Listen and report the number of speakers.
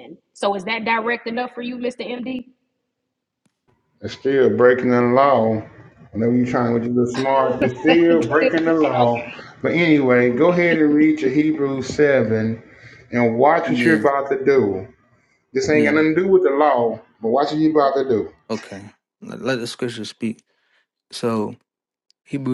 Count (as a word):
three